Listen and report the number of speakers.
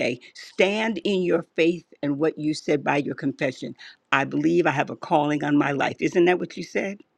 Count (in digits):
1